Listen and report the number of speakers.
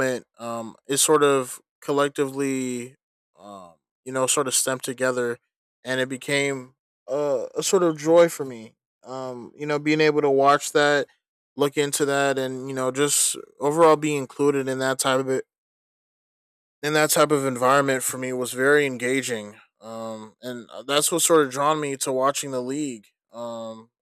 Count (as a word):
one